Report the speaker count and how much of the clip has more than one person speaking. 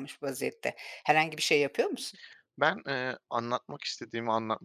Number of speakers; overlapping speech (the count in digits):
2, no overlap